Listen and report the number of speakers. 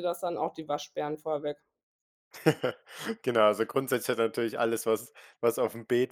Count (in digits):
2